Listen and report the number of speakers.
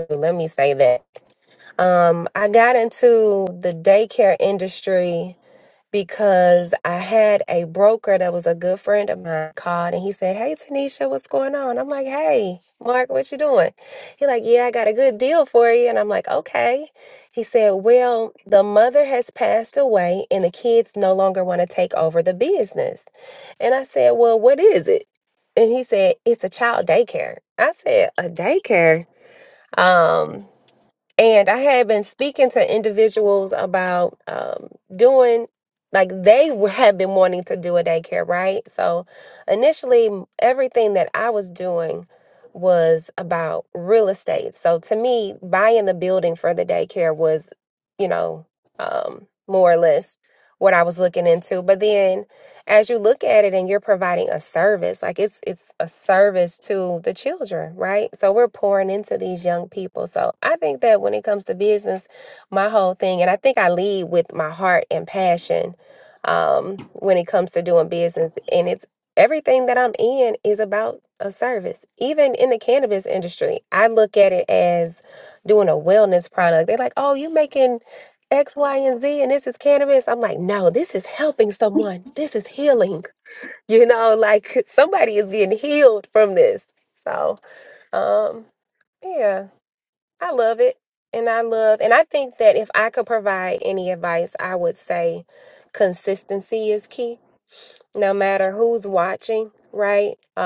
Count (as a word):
one